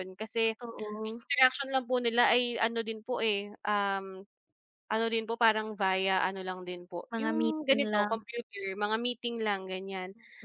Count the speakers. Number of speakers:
2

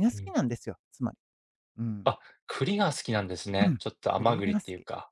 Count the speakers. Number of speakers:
2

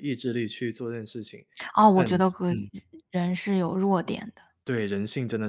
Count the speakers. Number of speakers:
2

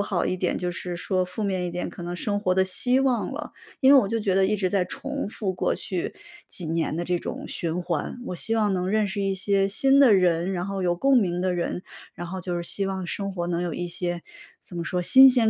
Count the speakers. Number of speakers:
1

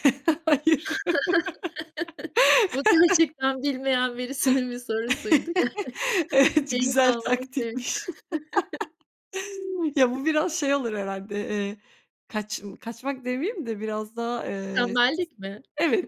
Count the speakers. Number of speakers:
2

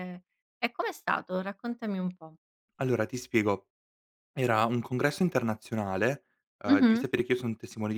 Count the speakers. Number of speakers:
2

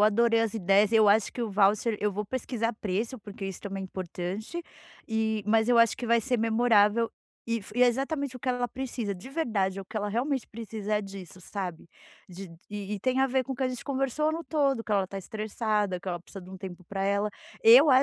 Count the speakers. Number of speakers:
1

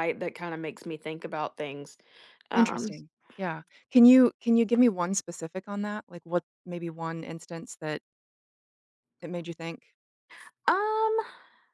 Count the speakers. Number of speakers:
2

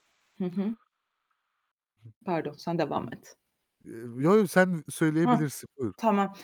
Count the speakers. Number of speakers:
2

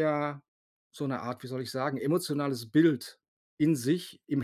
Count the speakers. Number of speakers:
1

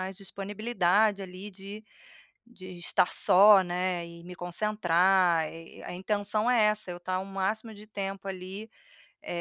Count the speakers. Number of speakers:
1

